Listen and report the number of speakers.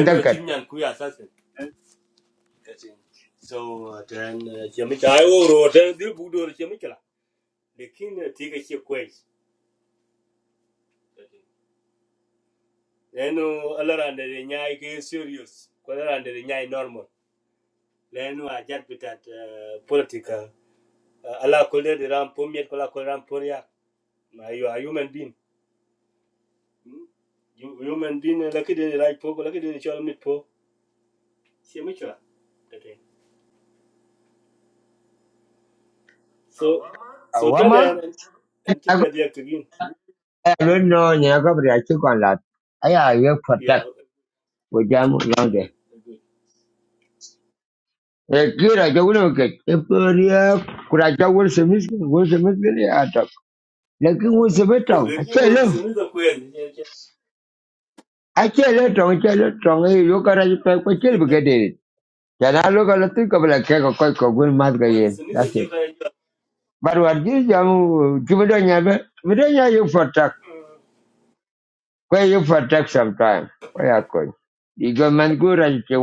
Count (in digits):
2